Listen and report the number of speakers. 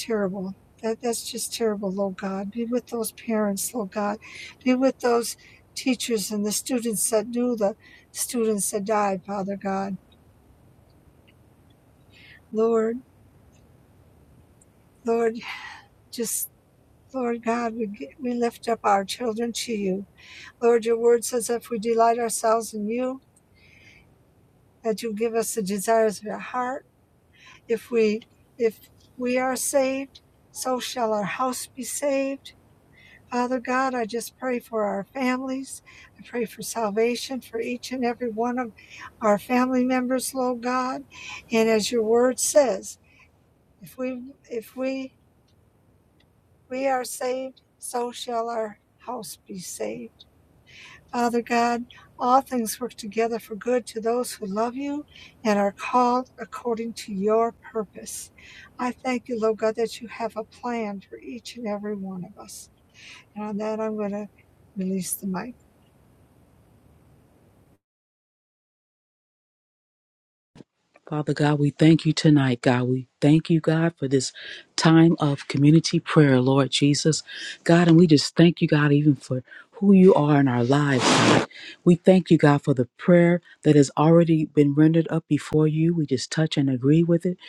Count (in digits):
2